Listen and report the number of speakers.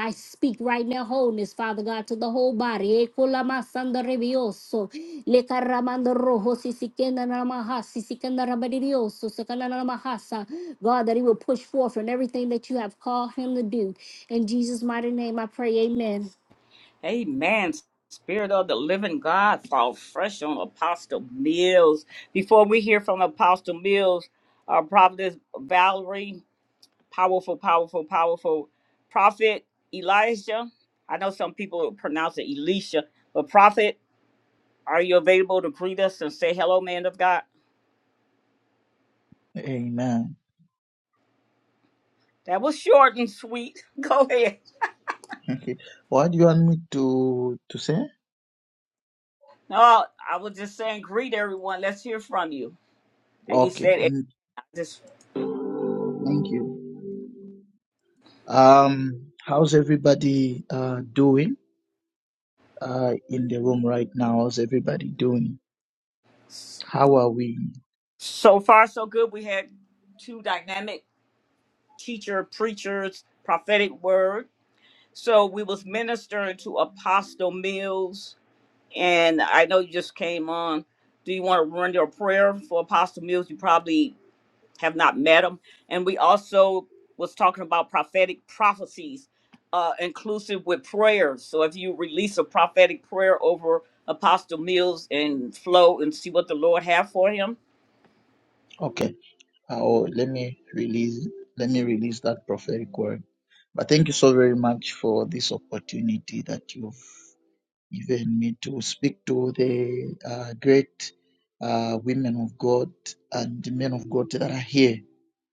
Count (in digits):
3